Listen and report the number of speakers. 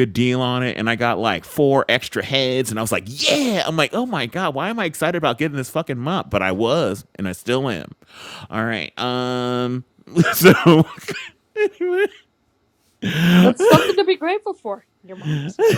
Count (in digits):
2